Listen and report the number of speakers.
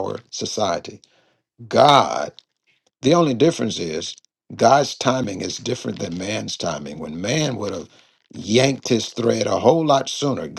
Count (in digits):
1